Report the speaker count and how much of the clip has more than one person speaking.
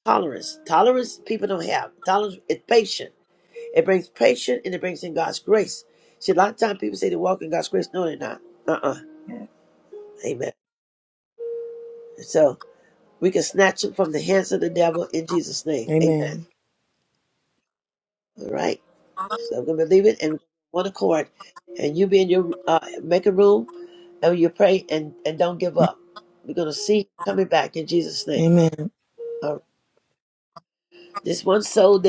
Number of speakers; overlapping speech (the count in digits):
2, about 2%